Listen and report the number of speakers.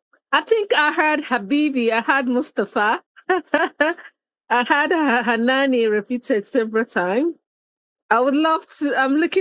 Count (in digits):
1